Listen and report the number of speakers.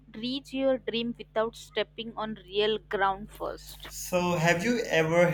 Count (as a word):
two